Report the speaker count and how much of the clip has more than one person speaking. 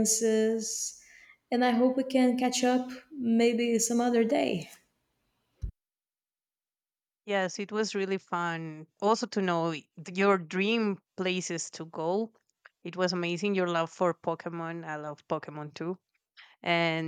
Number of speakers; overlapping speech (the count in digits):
2, no overlap